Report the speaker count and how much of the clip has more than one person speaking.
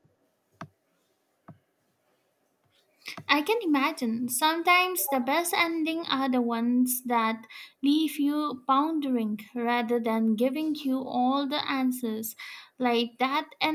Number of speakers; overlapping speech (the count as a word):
one, no overlap